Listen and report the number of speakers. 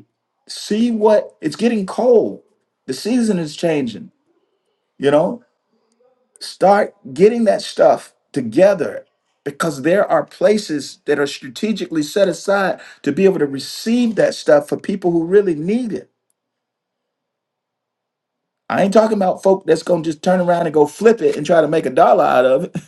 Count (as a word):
one